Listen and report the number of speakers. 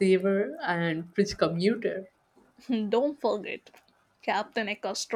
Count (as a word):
two